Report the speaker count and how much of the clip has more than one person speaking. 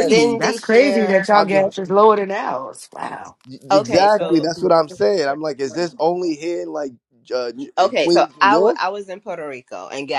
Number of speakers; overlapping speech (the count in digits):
3, about 31%